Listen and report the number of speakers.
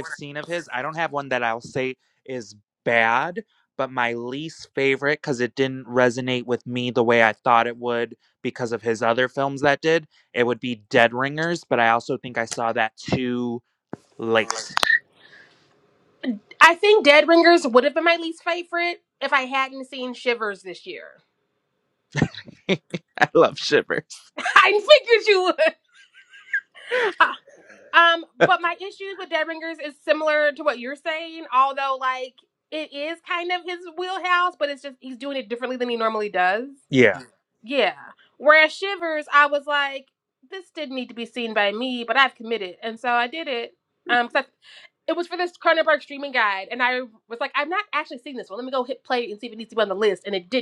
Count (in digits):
2